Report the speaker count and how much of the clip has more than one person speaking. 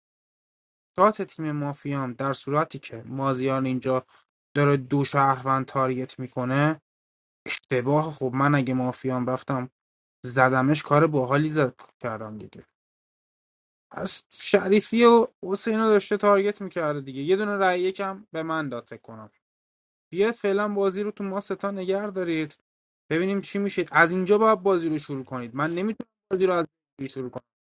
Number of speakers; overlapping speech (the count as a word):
one, no overlap